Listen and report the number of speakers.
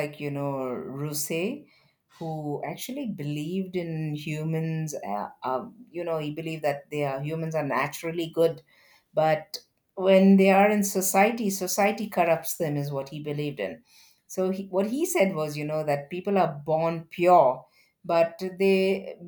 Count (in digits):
1